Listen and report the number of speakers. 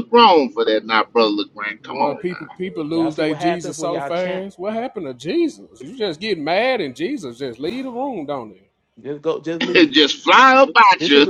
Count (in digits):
3